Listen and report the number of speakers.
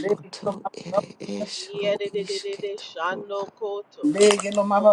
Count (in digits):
3